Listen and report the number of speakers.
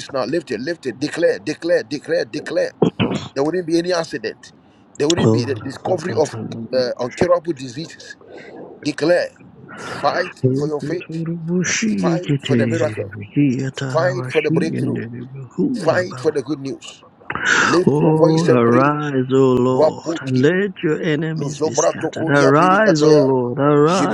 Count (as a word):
two